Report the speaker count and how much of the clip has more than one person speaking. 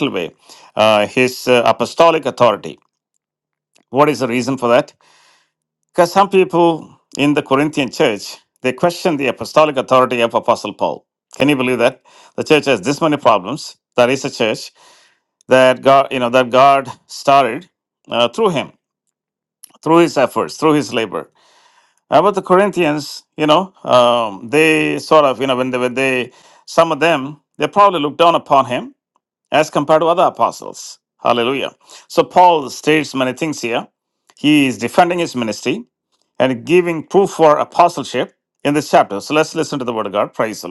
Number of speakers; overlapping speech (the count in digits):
1, no overlap